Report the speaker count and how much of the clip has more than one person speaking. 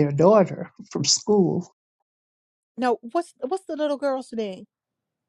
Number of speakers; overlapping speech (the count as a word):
two, no overlap